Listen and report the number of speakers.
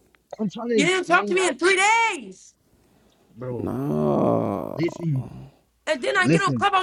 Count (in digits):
3